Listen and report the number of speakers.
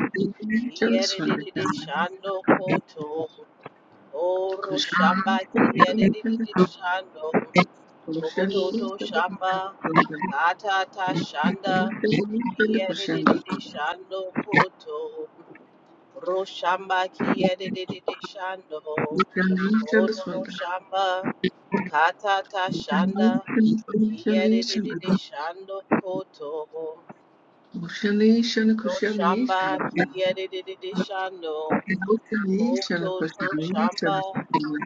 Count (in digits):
2